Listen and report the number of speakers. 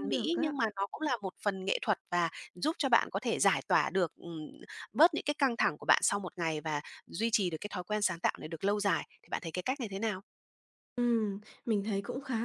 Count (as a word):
two